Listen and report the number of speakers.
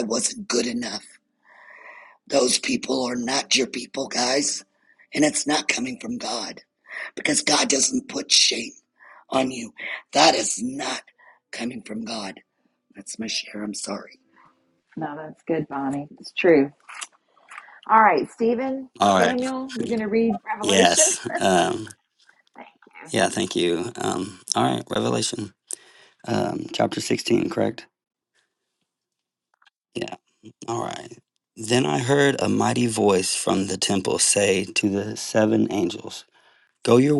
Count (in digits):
3